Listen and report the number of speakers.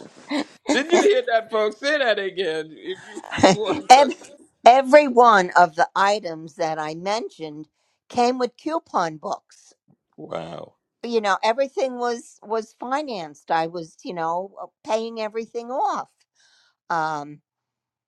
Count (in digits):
2